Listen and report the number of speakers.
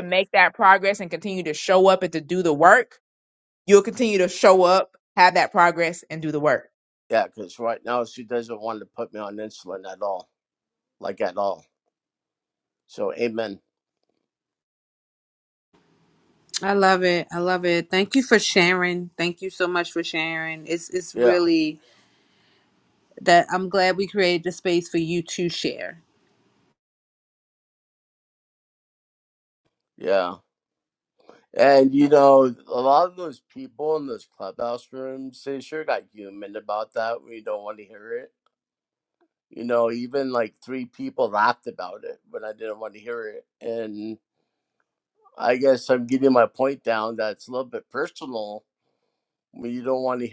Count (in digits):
3